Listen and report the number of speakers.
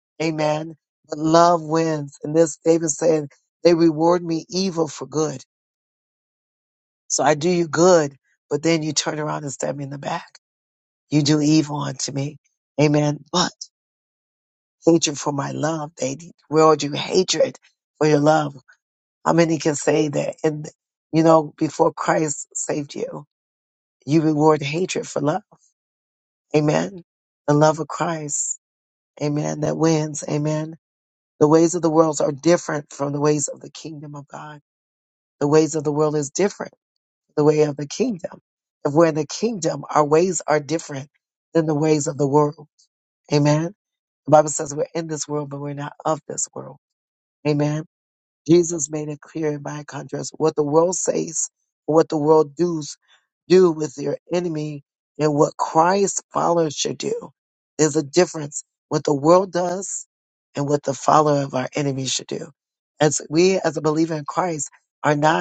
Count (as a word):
one